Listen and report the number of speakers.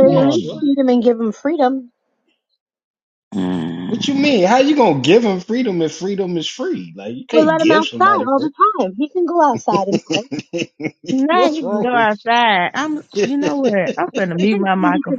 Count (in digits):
3